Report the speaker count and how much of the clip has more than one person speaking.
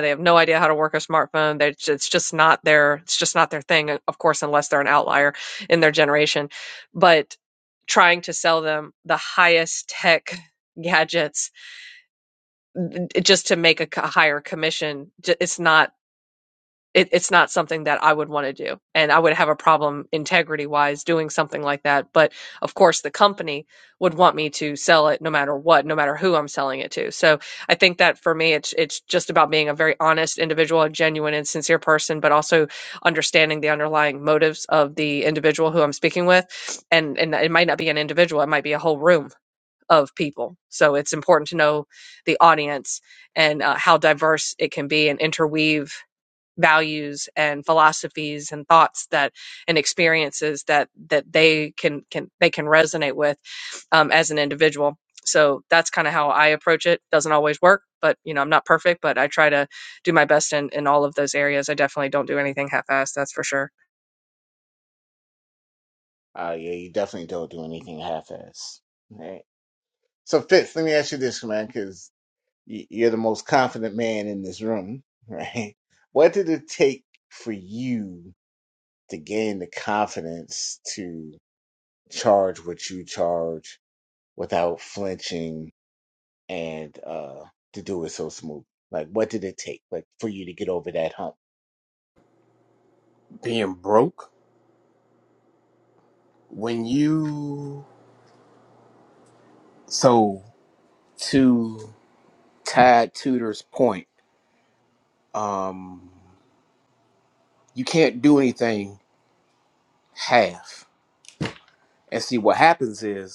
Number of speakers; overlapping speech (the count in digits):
3, no overlap